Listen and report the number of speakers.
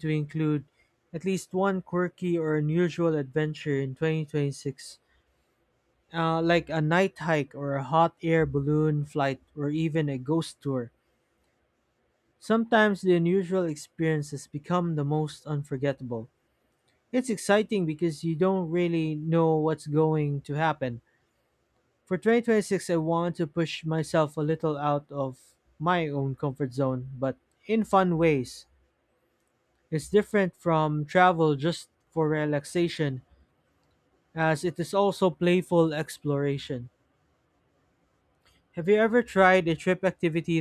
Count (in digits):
1